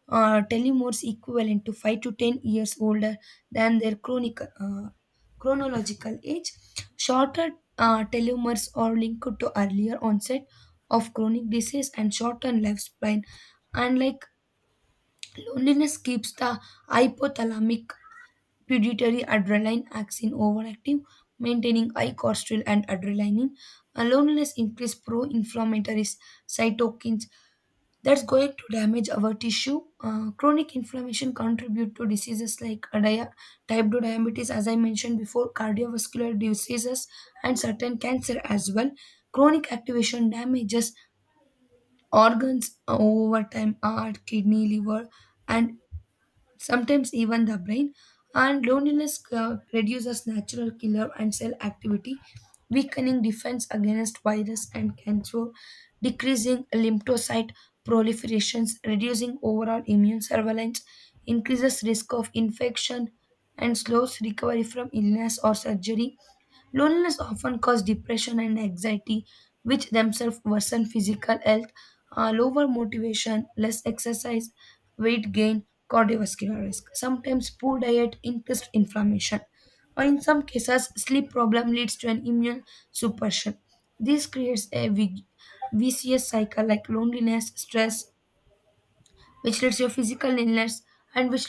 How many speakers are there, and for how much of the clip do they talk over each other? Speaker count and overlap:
1, no overlap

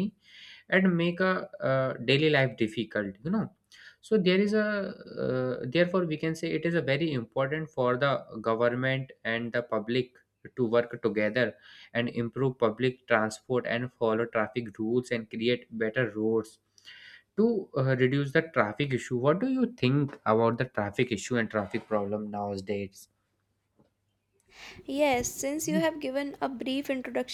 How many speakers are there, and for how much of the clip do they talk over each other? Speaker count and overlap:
2, no overlap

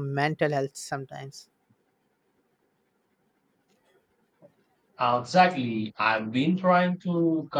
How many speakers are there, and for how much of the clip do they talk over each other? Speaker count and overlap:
2, no overlap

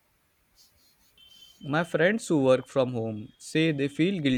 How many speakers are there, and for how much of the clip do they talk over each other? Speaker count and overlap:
1, no overlap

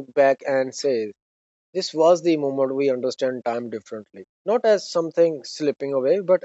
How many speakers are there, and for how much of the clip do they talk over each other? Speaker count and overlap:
1, no overlap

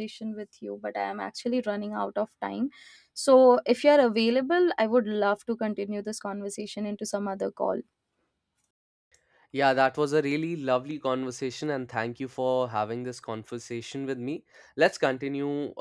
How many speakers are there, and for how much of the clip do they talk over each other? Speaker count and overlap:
2, no overlap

